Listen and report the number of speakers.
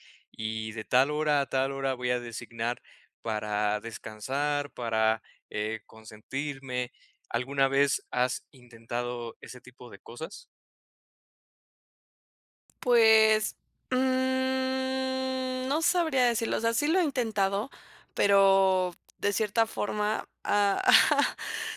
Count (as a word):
two